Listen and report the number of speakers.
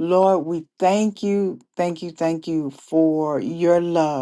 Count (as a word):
one